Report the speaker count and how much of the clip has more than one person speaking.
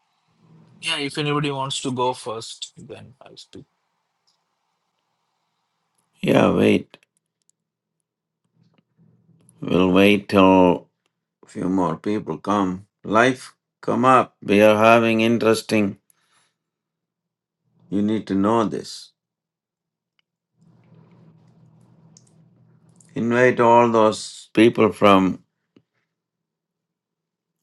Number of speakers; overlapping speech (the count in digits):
2, no overlap